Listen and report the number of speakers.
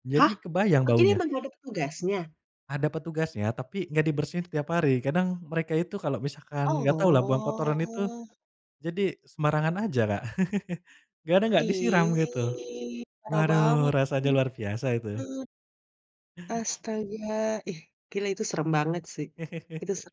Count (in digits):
2